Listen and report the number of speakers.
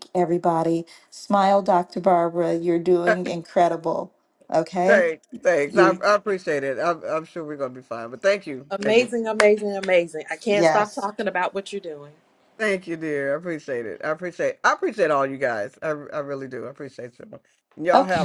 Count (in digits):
3